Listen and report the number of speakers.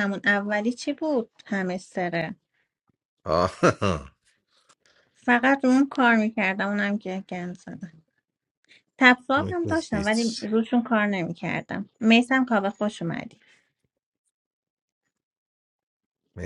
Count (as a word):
two